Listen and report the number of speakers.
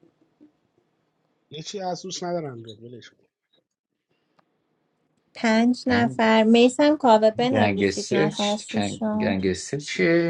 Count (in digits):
3